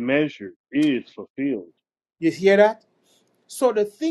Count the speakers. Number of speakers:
two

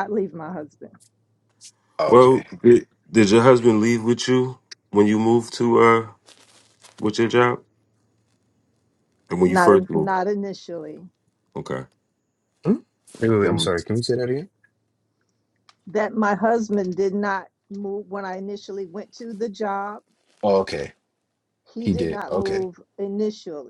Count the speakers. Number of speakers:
three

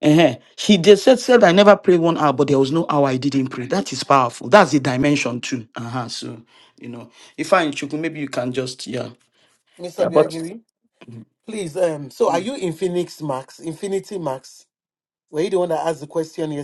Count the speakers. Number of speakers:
two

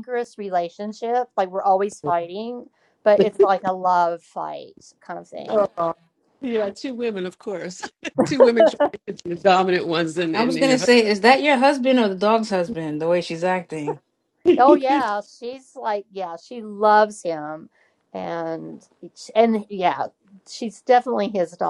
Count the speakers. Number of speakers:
three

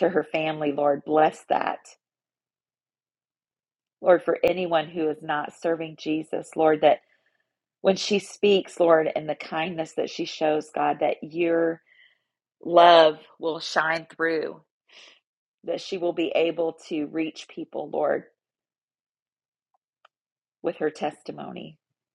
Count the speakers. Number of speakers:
one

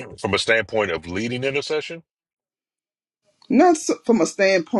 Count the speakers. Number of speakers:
two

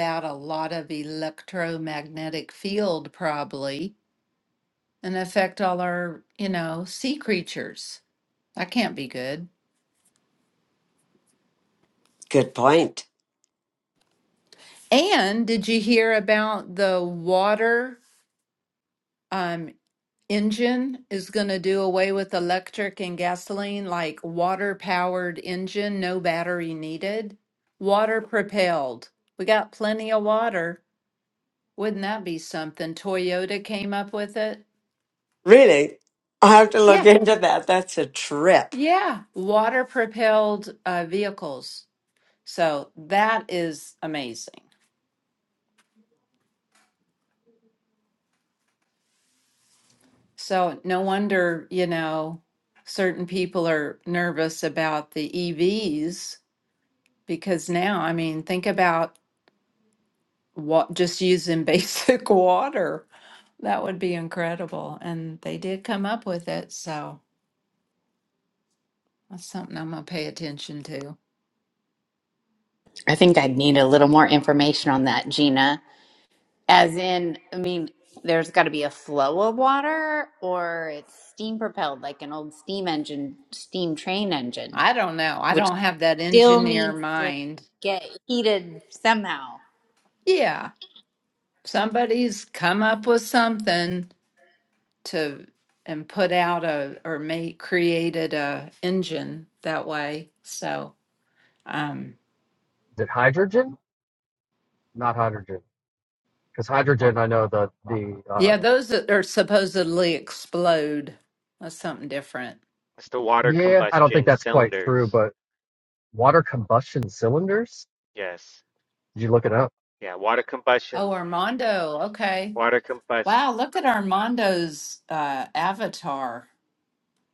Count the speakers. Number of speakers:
five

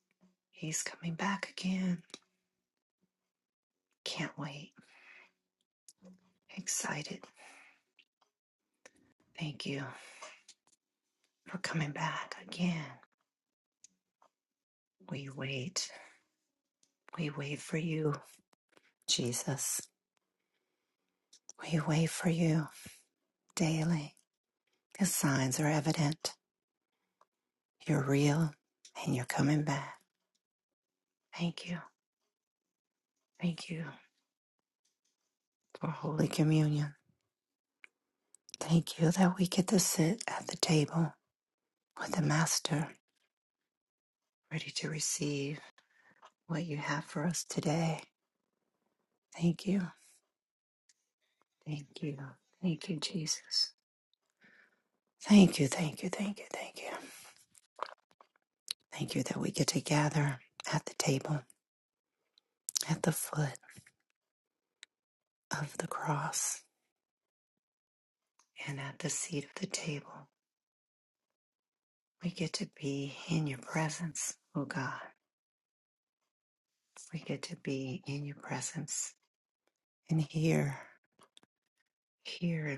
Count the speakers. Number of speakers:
one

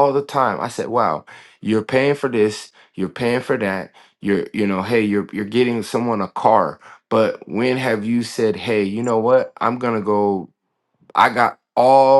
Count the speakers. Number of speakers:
one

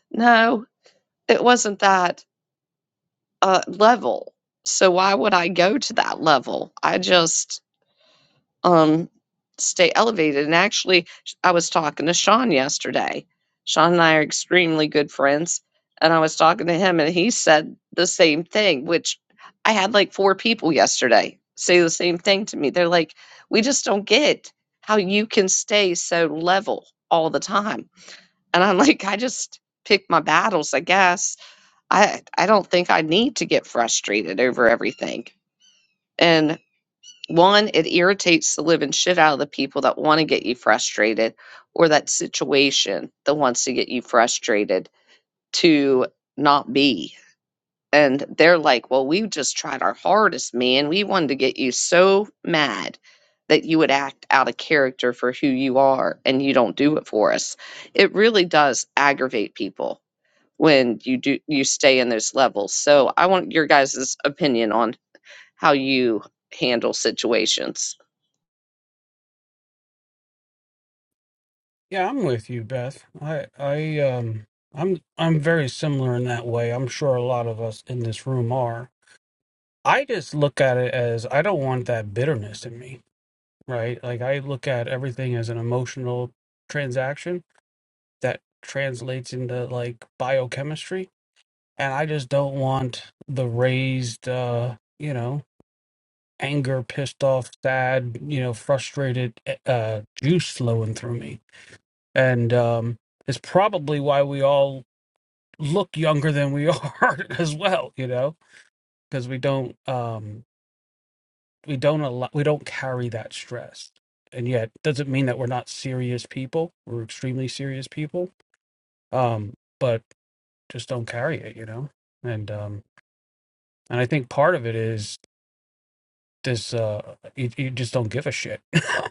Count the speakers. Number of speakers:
two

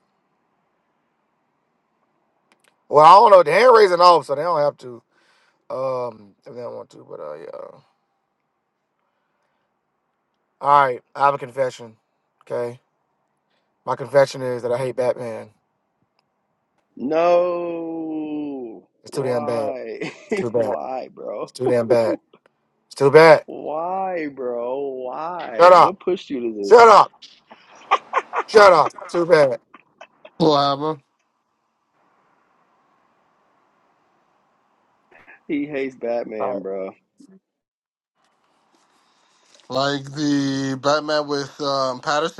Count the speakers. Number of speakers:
three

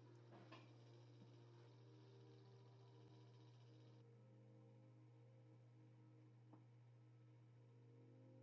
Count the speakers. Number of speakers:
zero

